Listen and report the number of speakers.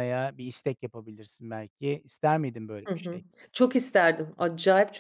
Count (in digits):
2